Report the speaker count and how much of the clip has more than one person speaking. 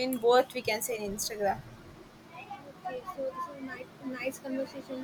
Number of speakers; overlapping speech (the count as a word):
two, no overlap